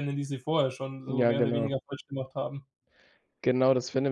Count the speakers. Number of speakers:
two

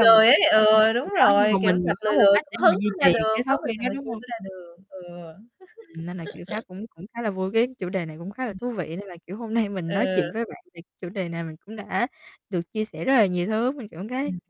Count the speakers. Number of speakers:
two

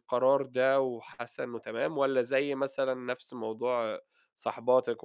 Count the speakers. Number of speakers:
one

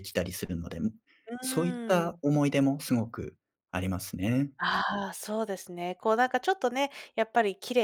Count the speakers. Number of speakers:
two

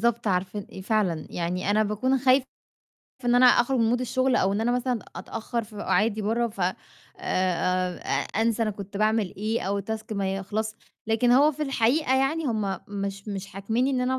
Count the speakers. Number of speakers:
one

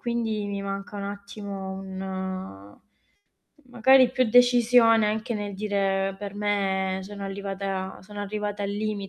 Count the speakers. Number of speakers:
one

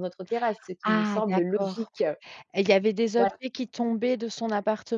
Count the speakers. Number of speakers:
two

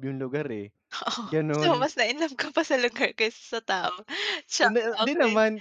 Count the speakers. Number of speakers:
two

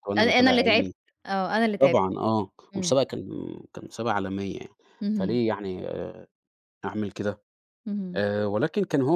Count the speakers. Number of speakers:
two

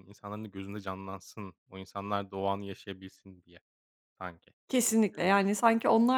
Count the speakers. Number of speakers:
two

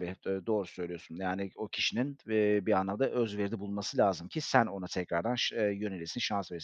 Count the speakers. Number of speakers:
one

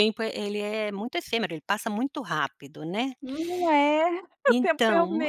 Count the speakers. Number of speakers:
two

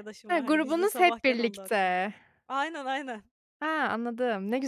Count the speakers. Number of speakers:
two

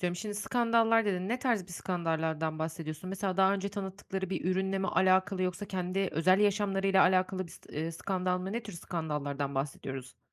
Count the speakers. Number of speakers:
one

